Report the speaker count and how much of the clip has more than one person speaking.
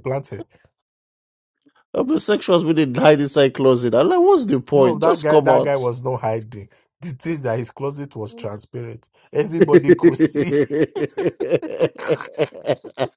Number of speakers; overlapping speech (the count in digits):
2, about 7%